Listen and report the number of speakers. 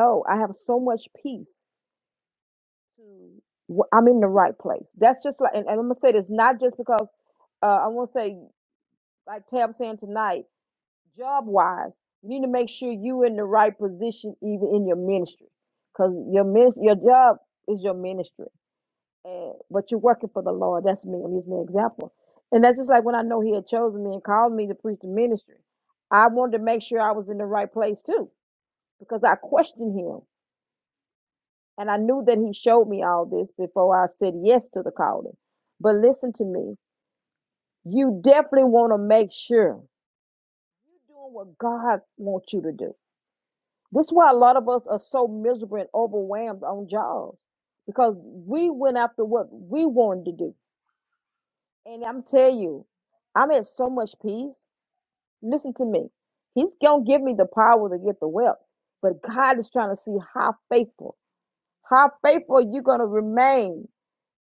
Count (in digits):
1